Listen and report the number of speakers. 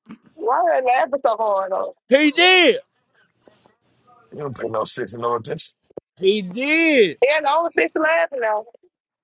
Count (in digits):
3